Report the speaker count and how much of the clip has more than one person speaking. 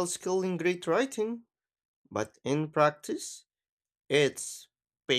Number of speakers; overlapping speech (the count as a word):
one, no overlap